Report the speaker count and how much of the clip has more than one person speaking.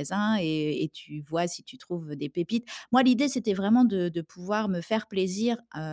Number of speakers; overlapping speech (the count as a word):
one, no overlap